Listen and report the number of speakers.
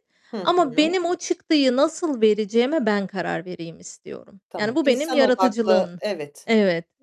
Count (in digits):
2